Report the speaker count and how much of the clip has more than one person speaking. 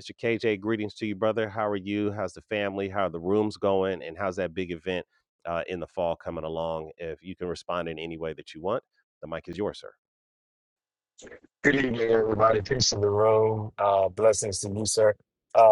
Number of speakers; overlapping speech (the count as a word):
two, no overlap